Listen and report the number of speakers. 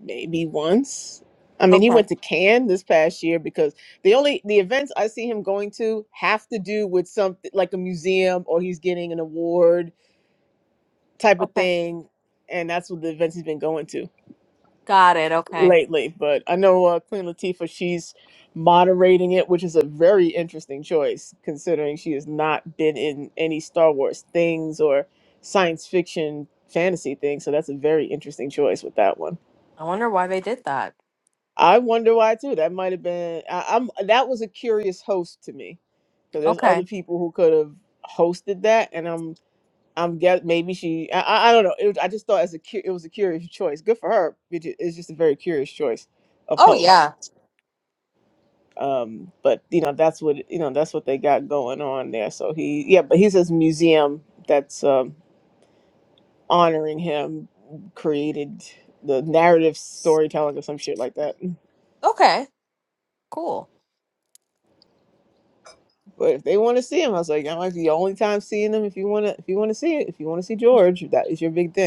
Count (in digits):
2